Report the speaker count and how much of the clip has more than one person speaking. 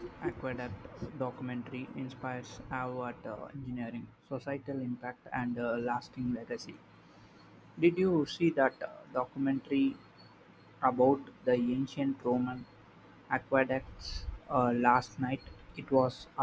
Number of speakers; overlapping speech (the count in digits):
1, no overlap